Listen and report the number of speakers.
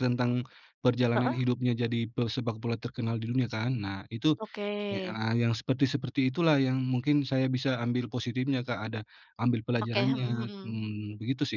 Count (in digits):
2